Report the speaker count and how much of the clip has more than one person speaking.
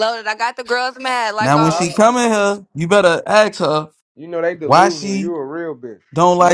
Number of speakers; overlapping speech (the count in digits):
3, about 21%